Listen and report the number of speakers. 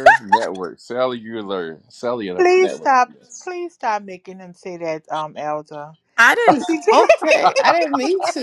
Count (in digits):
3